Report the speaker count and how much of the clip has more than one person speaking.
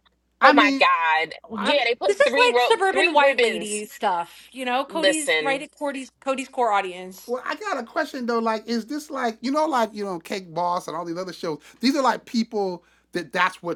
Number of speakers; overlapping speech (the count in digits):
3, about 22%